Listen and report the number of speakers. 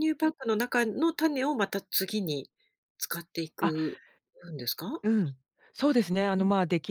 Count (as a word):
two